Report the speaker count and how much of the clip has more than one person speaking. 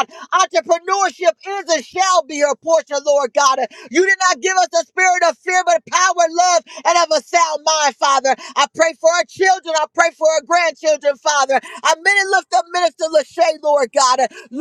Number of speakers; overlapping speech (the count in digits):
1, no overlap